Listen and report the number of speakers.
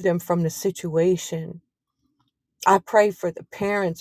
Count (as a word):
one